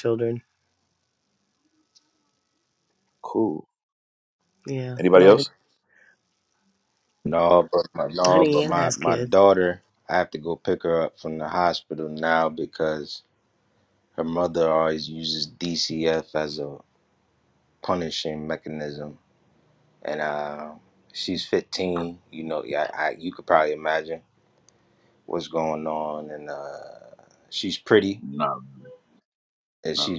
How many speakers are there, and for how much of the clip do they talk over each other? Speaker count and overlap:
3, about 5%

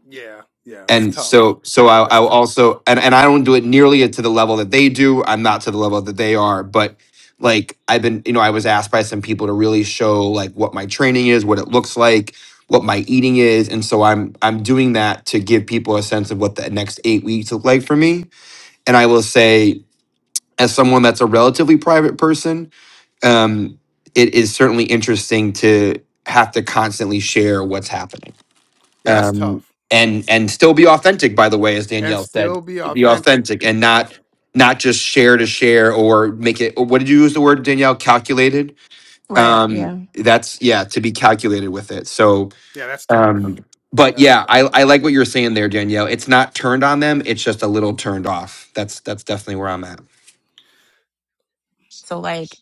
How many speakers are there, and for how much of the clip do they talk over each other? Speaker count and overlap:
3, about 8%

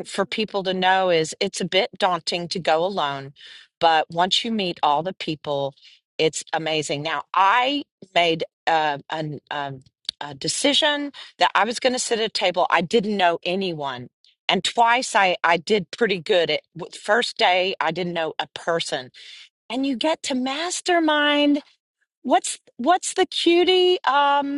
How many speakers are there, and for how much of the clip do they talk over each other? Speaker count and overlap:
1, no overlap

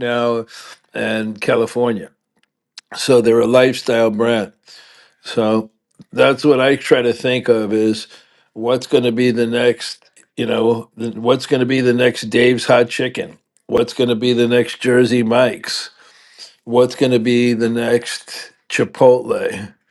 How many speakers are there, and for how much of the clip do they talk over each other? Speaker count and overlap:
1, no overlap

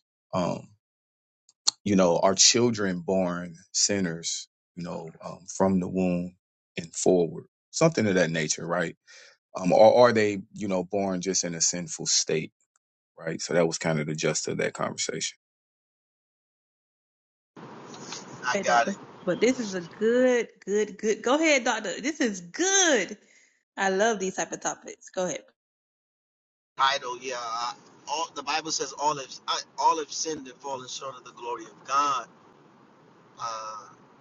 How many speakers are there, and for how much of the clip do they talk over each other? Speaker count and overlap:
3, about 1%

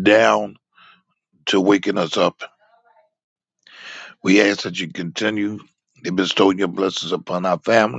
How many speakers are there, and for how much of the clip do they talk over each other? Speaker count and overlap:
1, no overlap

